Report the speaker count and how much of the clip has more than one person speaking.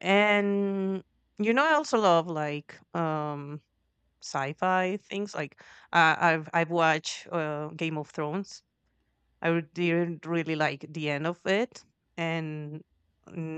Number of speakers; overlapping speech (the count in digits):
1, no overlap